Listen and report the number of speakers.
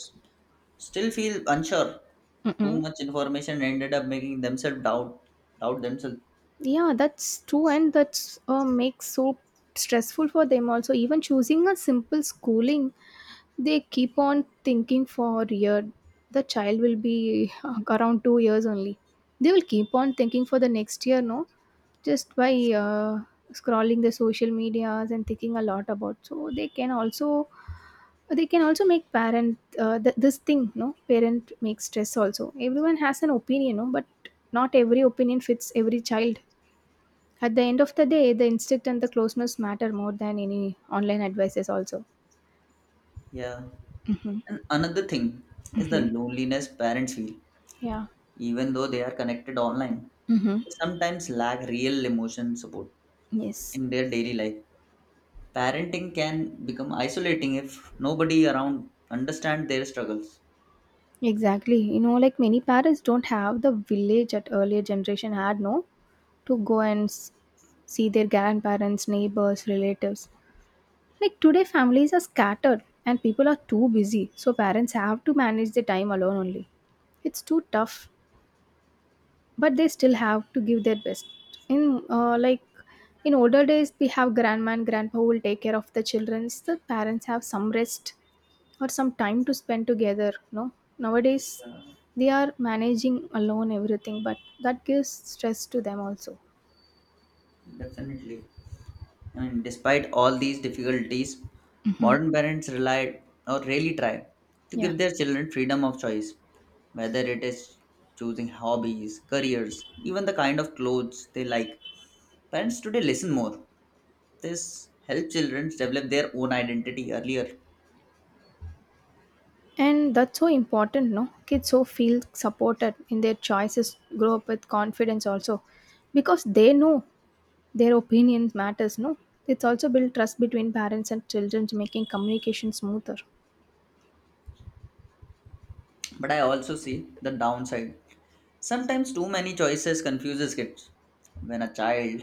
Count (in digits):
2